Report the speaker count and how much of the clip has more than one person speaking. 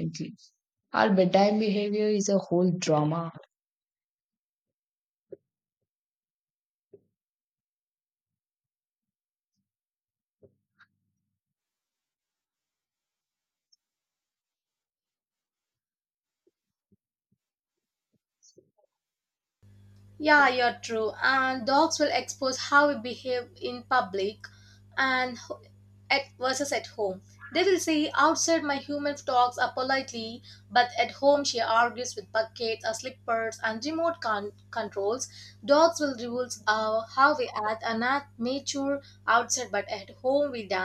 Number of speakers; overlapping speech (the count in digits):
2, no overlap